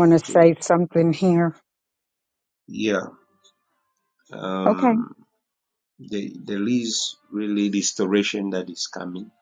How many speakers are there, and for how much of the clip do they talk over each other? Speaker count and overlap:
2, about 8%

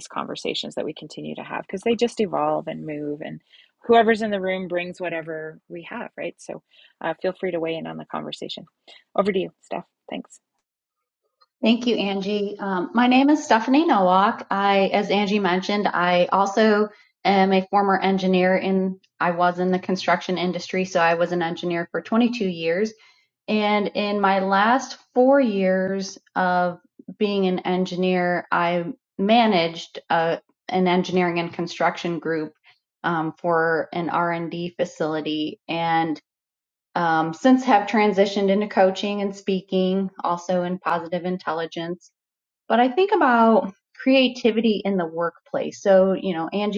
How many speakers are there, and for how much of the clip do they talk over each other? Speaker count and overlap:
2, no overlap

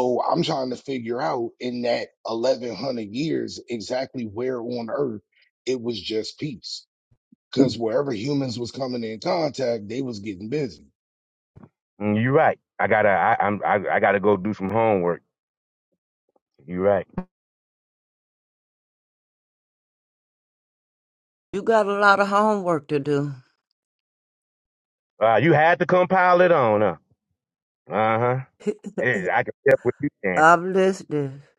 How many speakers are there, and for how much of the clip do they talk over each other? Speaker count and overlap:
3, under 1%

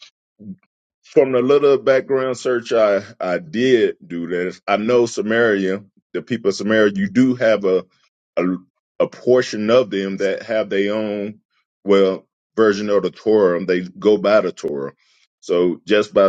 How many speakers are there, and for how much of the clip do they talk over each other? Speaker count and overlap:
1, no overlap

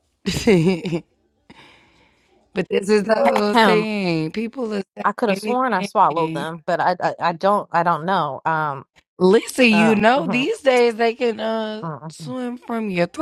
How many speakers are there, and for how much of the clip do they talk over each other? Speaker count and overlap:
2, about 19%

